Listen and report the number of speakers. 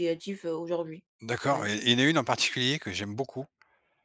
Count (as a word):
two